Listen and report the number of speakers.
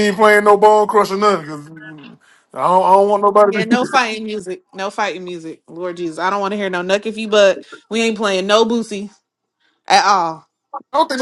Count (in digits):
2